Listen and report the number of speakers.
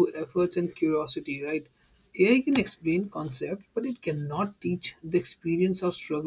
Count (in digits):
1